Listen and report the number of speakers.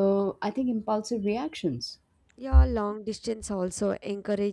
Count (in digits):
2